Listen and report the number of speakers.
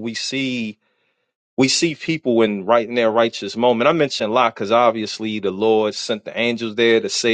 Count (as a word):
one